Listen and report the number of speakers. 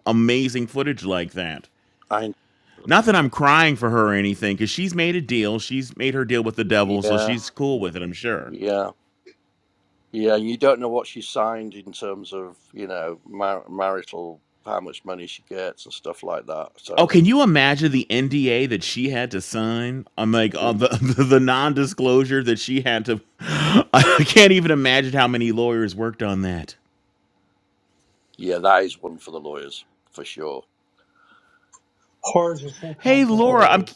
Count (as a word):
three